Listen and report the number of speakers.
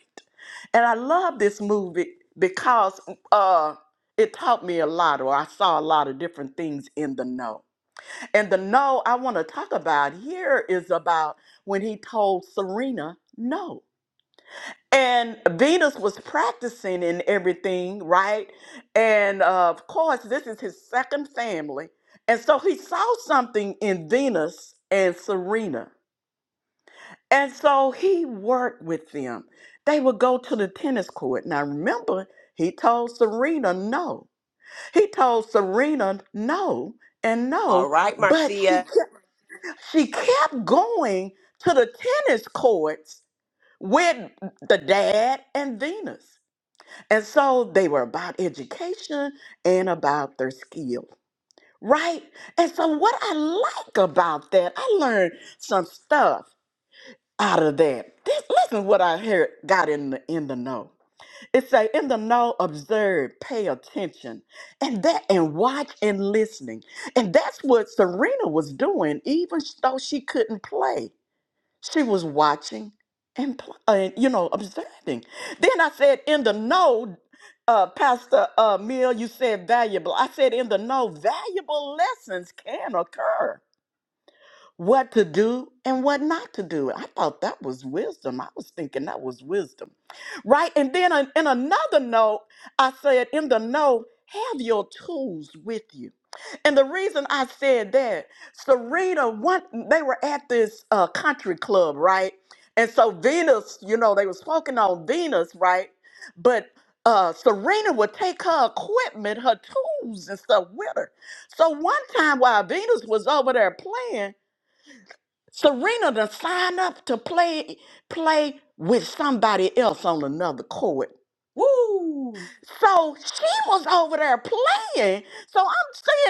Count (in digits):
2